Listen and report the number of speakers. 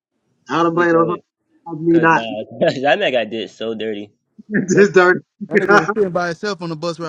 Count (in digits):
3